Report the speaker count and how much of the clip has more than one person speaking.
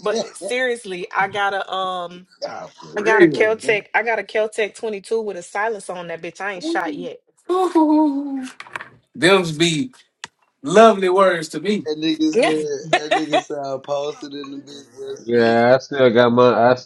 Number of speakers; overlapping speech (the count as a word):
four, about 7%